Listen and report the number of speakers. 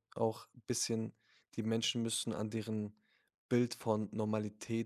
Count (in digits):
1